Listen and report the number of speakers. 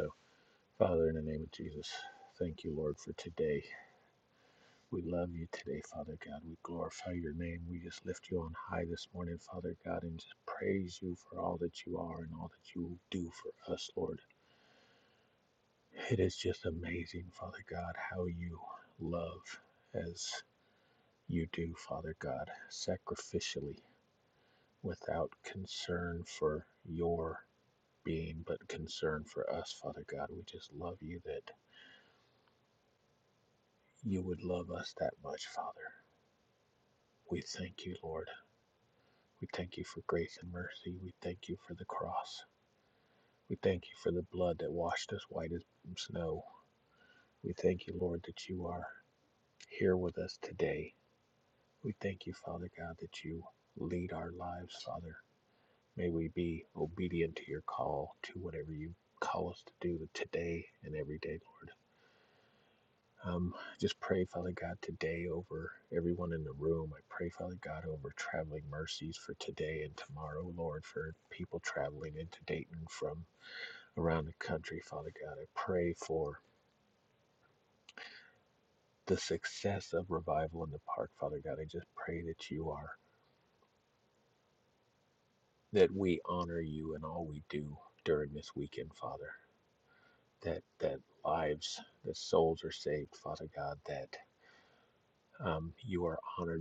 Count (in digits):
1